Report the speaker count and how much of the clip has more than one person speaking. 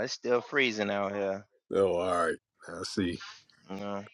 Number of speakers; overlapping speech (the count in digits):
2, no overlap